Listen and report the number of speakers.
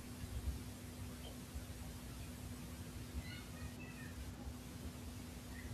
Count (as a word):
zero